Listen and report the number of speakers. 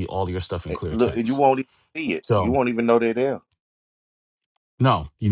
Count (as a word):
two